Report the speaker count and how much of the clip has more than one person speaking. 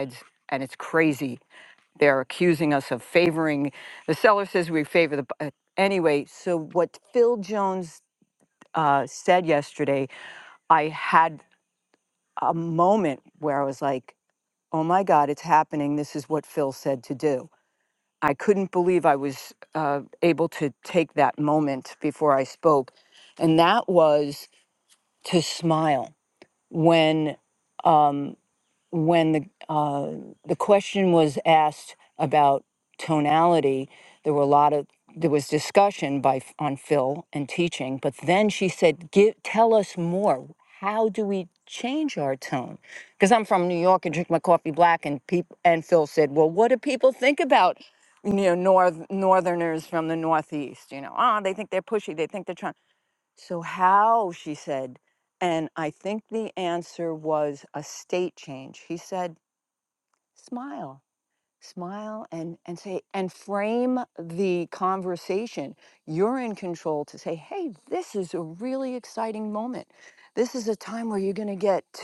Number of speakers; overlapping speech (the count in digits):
1, no overlap